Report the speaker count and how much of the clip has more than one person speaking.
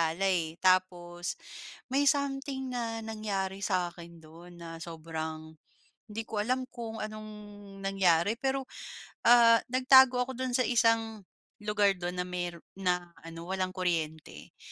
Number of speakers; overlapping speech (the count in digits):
1, no overlap